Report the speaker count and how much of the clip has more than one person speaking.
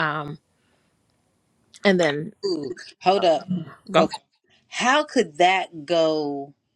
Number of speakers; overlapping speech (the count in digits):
2, about 2%